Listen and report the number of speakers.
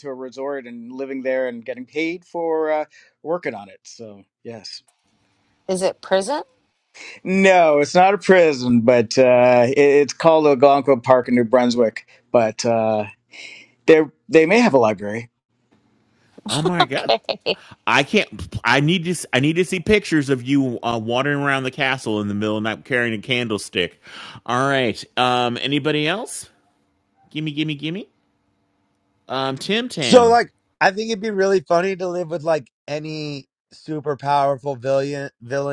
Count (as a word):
four